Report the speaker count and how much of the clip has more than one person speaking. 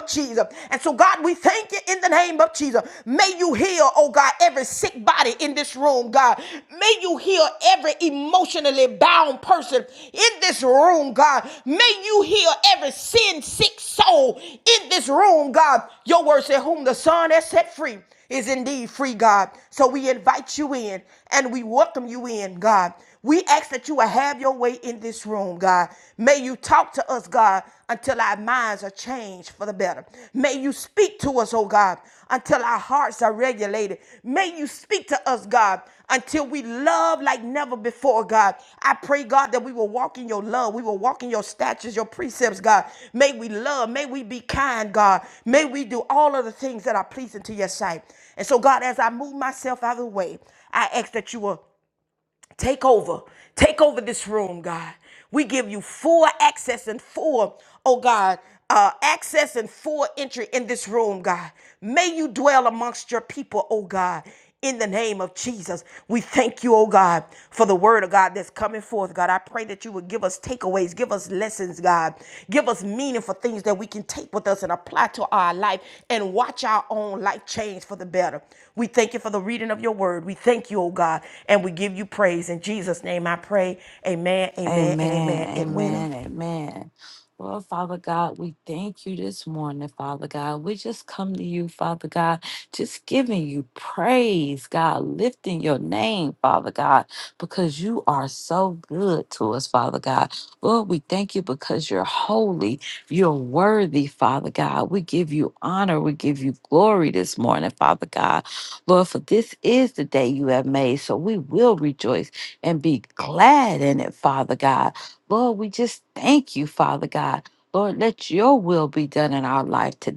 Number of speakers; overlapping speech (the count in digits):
2, about 1%